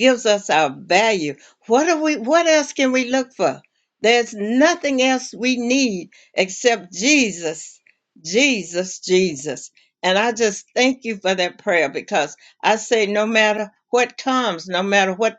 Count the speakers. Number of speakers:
one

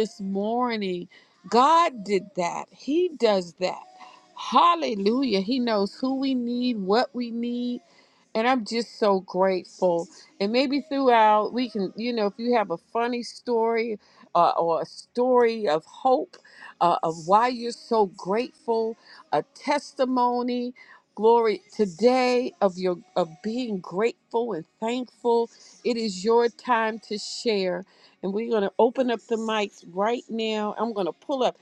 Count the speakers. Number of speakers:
one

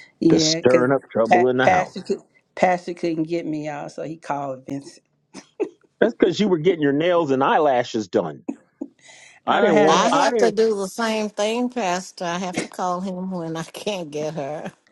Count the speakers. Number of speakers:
three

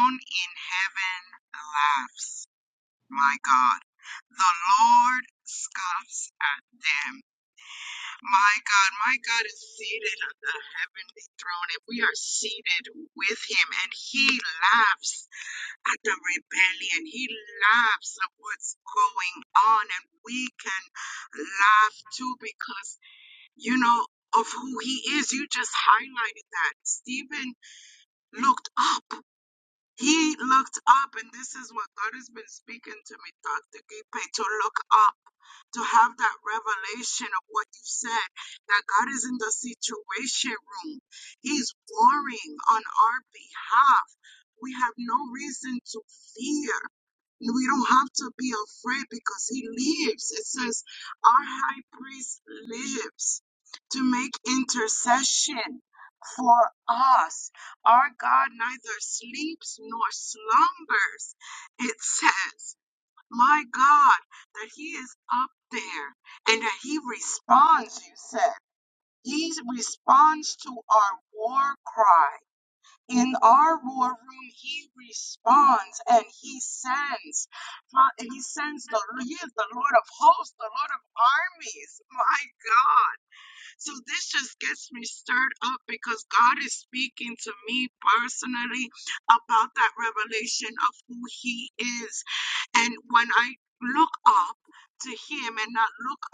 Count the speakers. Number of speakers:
one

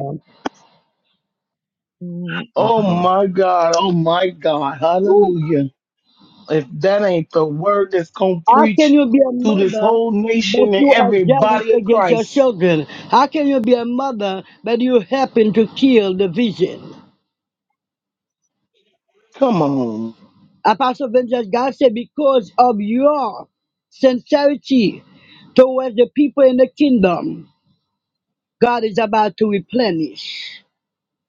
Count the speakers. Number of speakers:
three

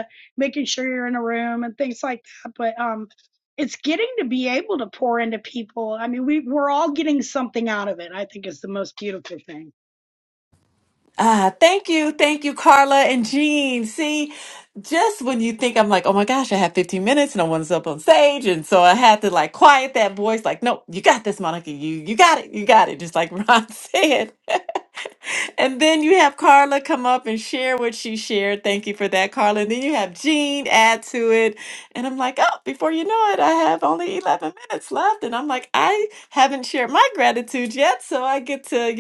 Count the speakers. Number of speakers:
two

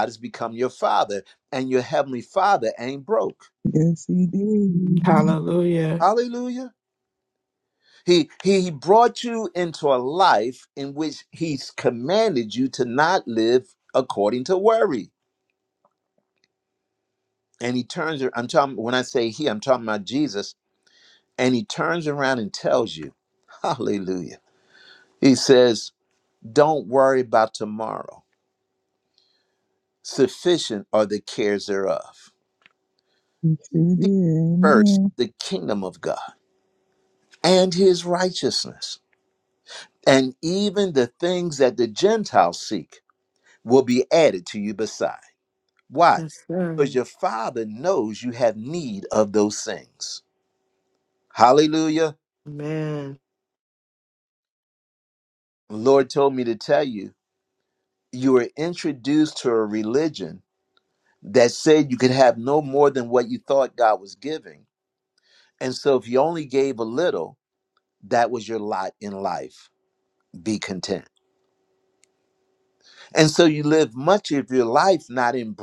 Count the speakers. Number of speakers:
four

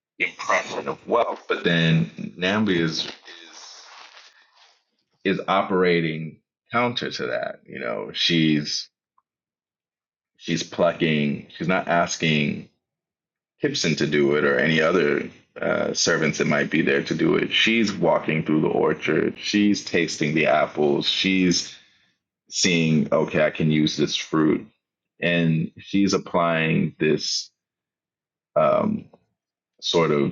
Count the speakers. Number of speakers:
one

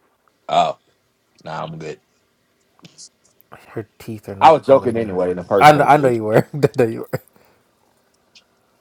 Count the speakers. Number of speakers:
two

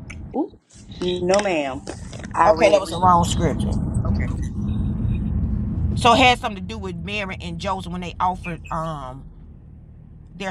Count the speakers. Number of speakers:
two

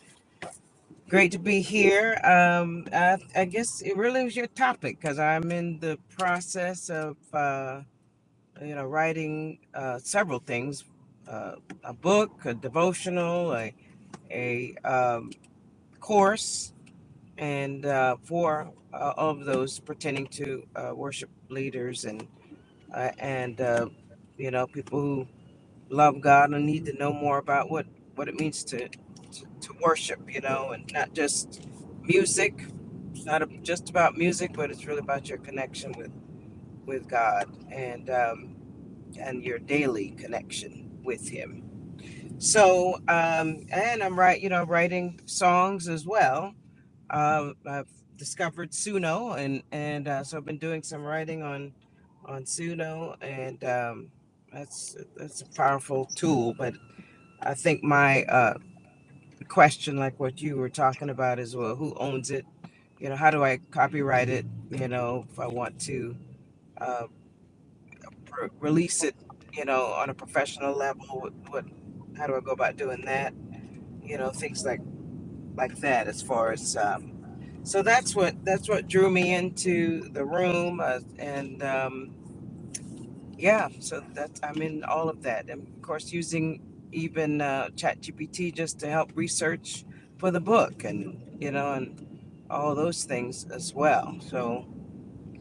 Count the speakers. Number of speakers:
one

